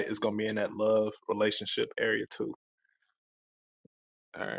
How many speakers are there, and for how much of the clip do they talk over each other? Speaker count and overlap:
one, no overlap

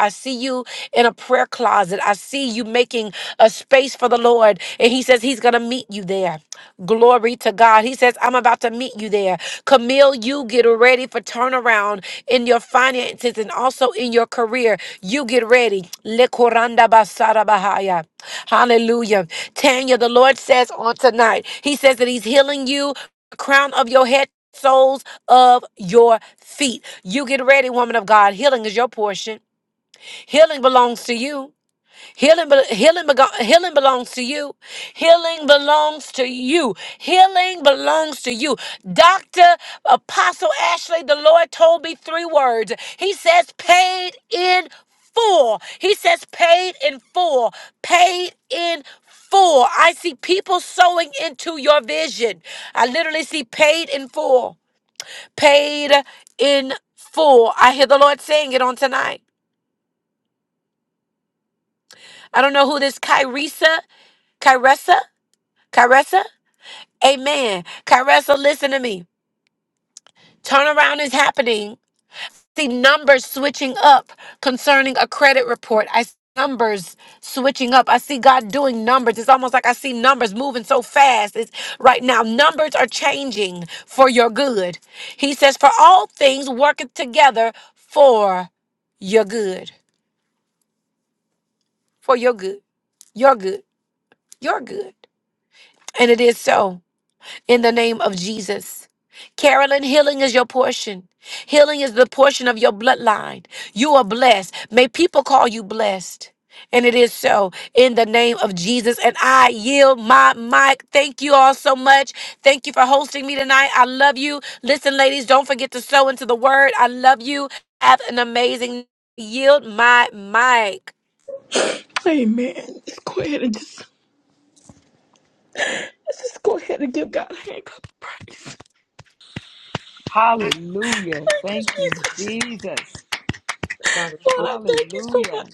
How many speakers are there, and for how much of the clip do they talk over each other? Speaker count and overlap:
three, about 2%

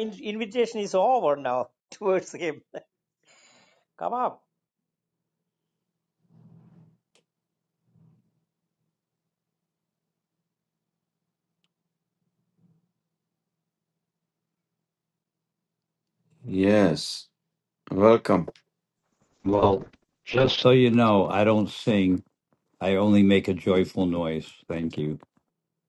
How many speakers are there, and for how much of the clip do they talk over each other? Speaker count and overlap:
three, no overlap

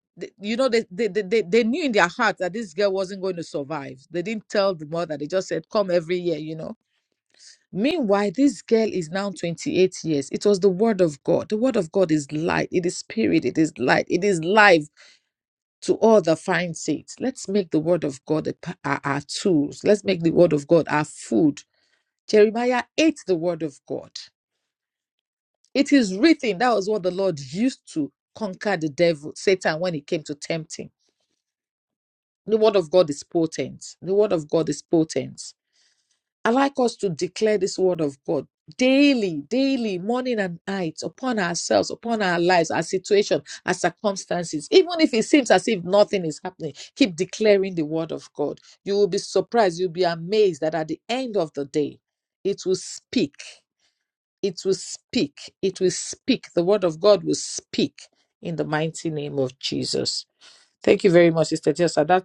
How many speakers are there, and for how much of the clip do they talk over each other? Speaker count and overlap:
one, no overlap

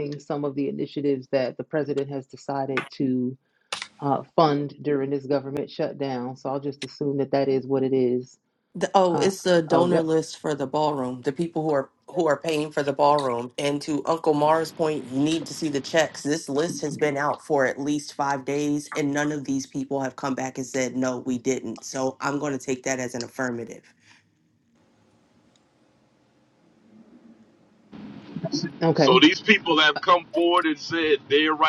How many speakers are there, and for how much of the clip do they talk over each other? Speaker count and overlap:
three, about 3%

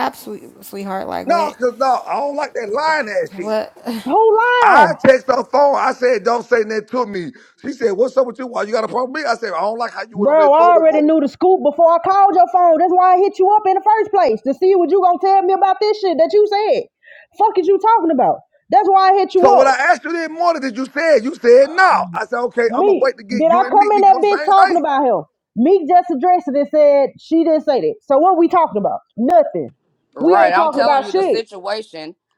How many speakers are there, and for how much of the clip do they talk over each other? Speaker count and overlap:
four, about 16%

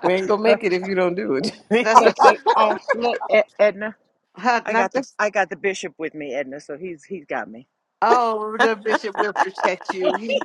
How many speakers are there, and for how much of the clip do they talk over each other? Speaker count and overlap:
three, about 8%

